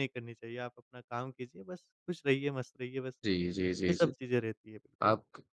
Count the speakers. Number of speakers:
2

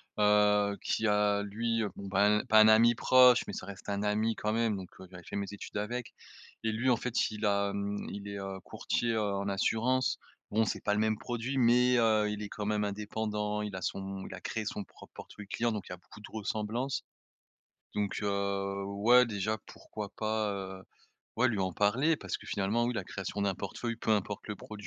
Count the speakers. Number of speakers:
1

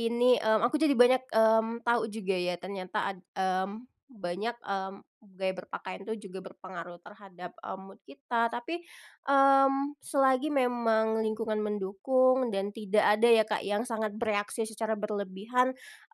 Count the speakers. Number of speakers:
1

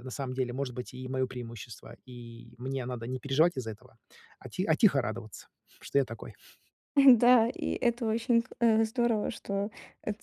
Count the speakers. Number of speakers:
2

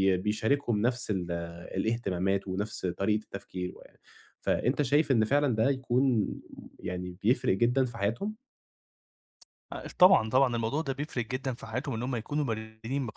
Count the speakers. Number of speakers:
2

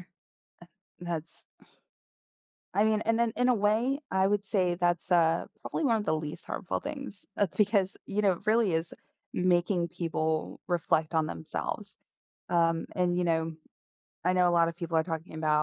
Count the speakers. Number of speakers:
1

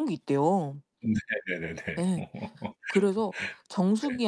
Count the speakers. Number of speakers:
2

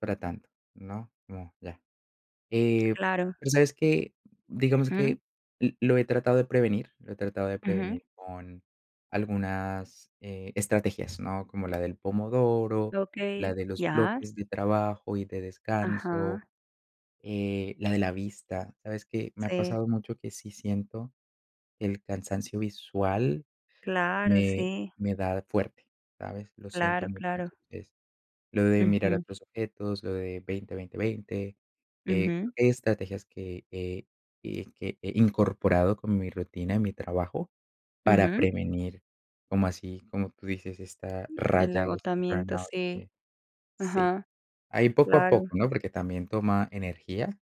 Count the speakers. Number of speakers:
2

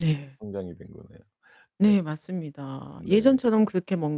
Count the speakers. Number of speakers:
2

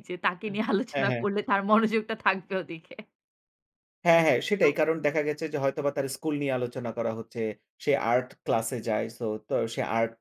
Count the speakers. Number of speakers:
2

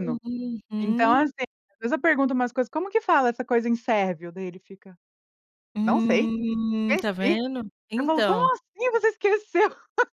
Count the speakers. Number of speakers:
2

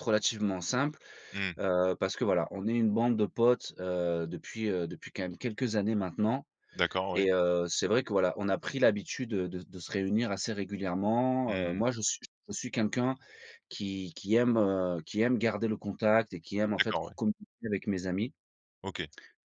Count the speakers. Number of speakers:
2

